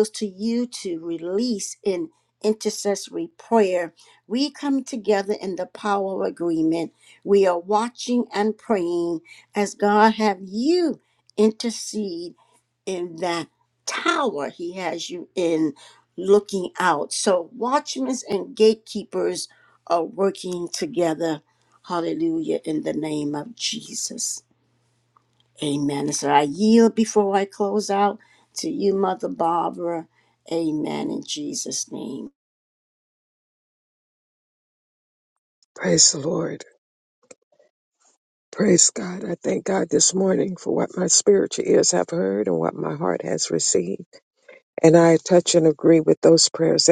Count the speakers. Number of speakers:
2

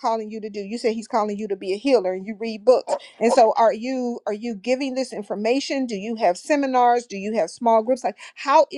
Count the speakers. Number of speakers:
1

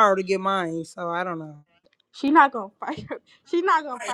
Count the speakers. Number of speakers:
2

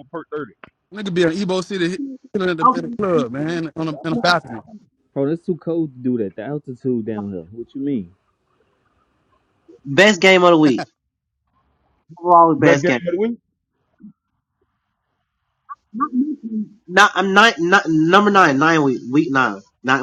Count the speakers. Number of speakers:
4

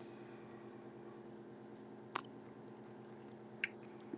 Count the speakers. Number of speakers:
0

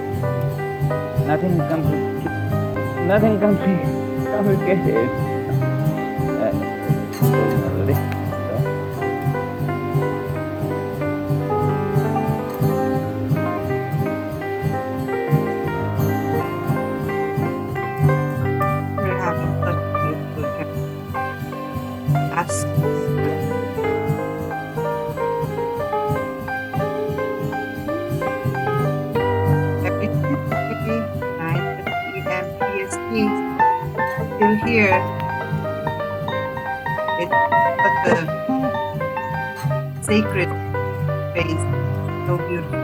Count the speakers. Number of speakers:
2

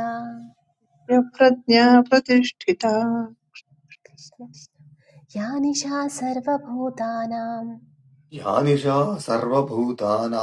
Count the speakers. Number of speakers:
3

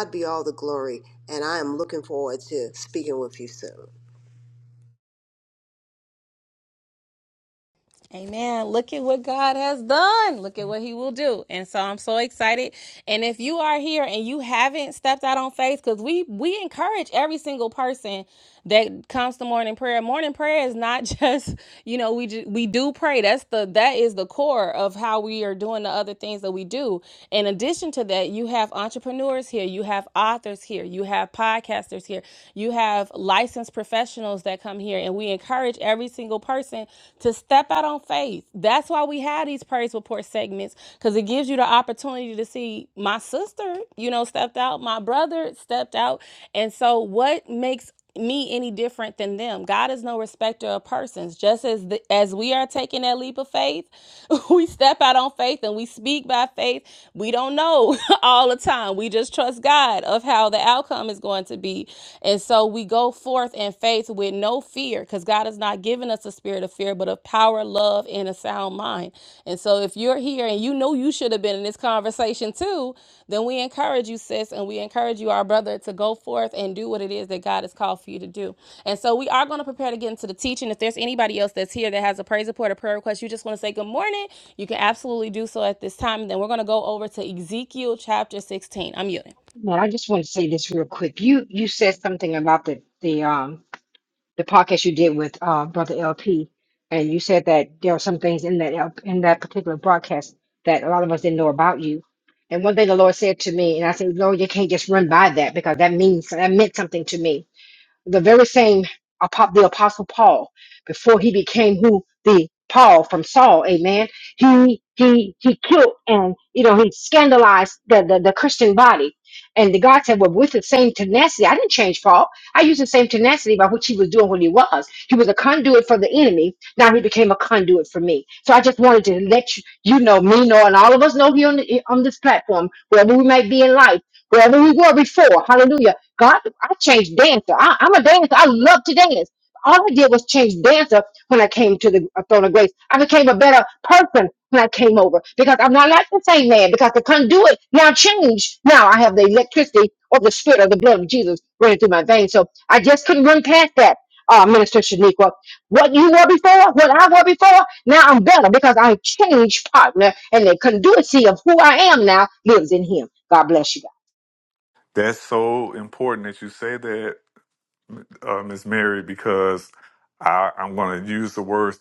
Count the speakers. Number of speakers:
4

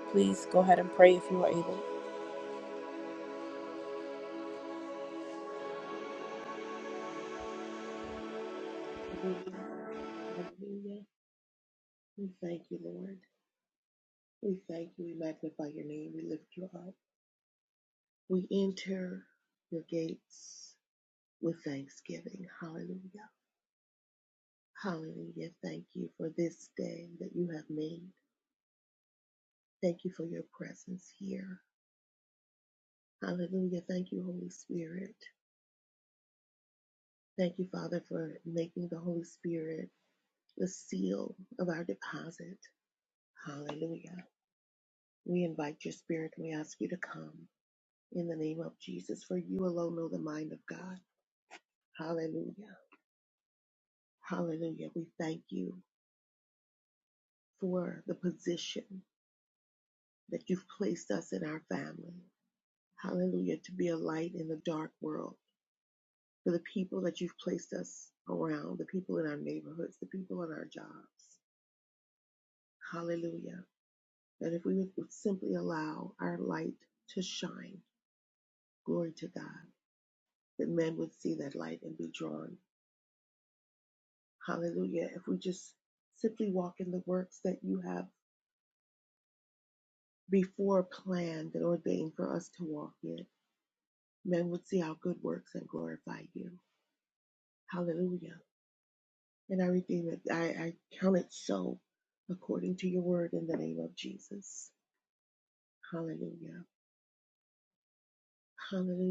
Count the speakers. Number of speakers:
2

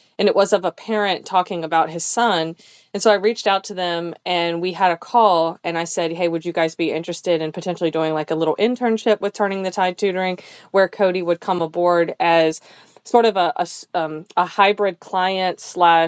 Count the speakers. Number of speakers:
1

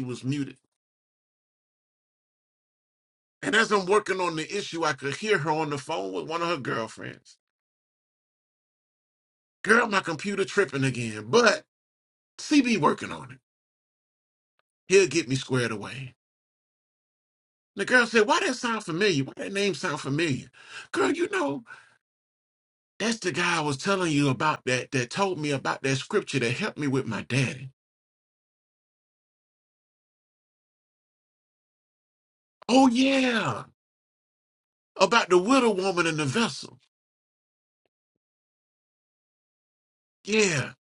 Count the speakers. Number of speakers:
1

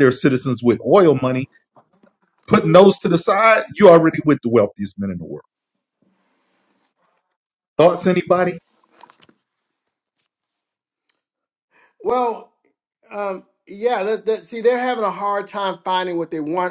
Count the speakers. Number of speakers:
2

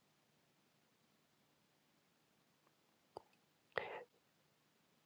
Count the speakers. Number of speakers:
0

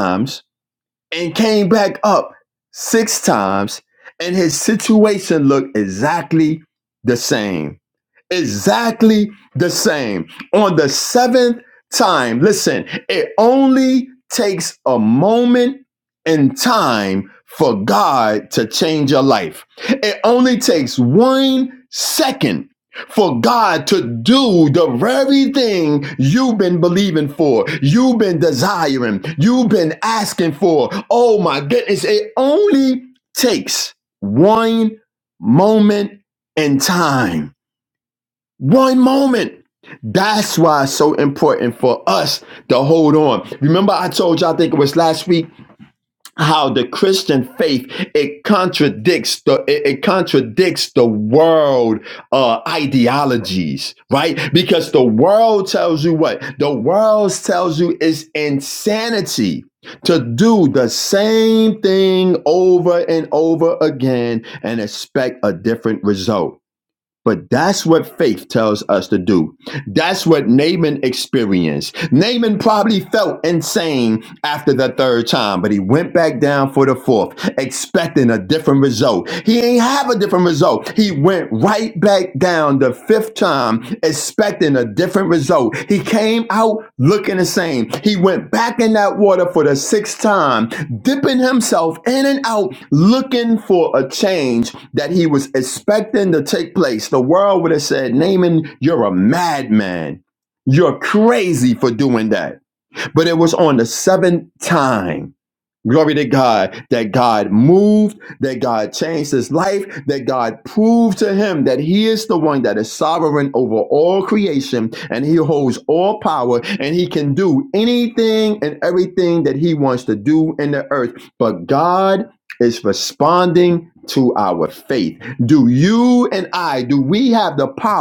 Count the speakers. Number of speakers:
1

